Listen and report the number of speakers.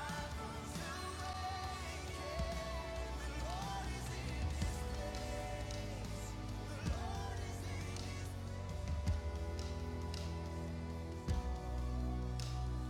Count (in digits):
0